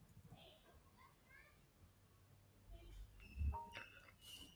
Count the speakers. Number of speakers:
zero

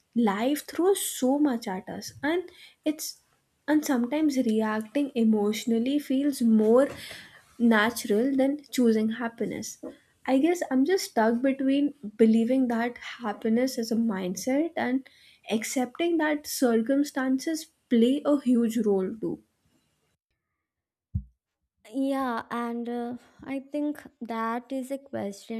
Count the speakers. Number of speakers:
two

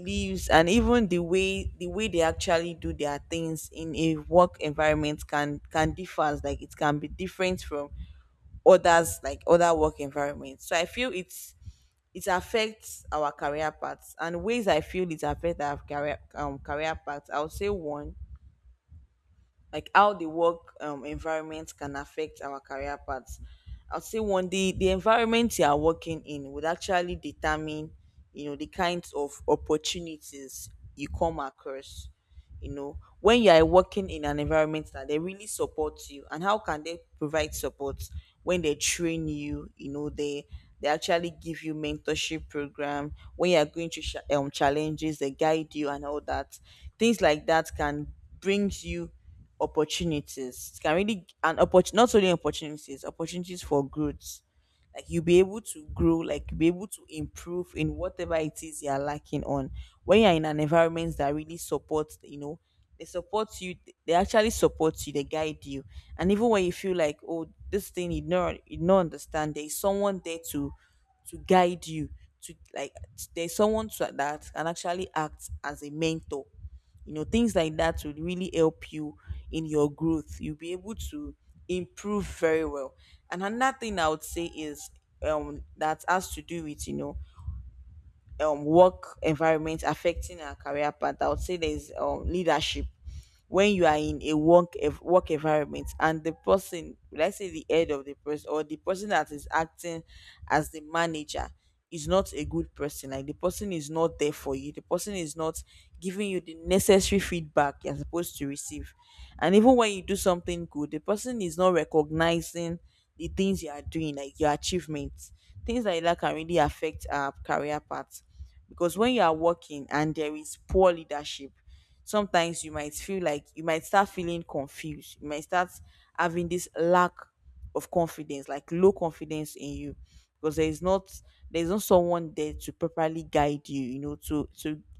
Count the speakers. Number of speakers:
one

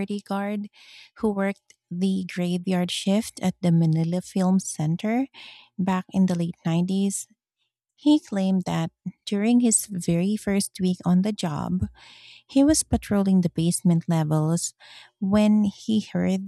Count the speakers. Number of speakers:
one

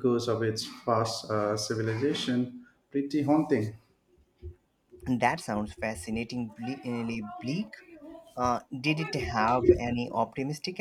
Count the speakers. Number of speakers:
two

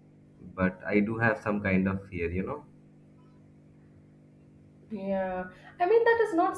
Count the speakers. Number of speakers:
two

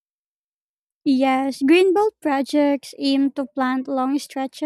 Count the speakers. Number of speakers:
one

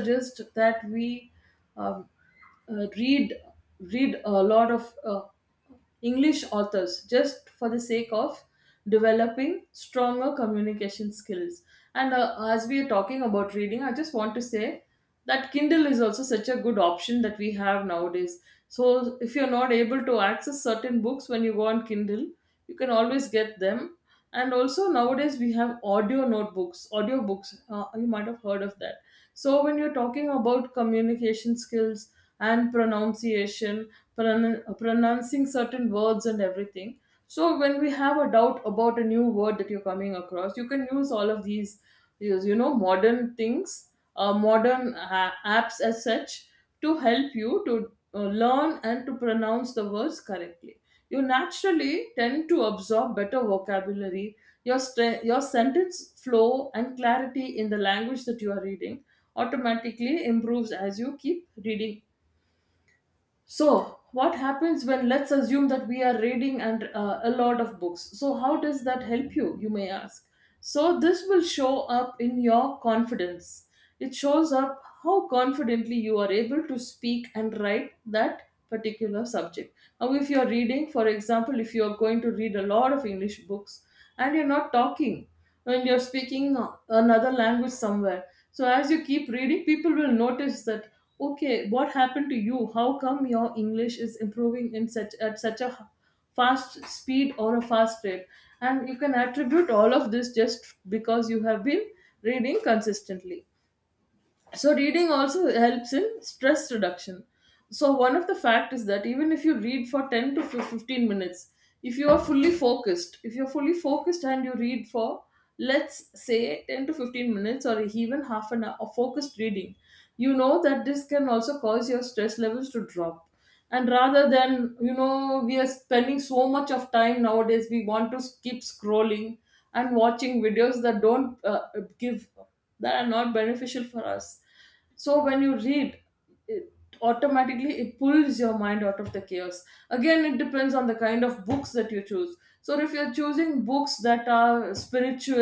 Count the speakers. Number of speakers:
one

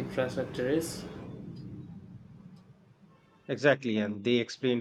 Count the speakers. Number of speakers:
two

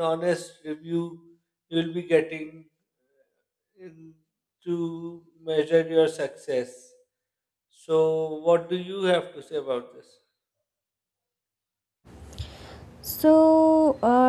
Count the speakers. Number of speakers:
two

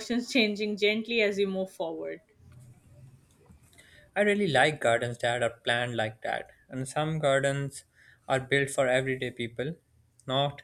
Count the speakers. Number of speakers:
two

